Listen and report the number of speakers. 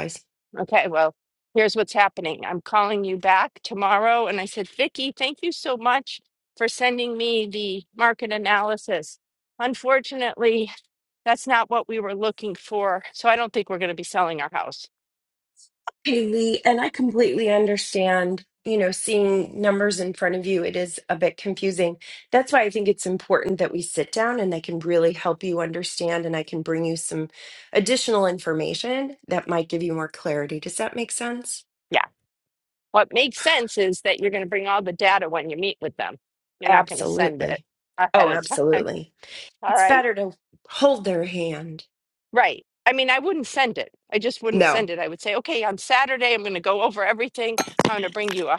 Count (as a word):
two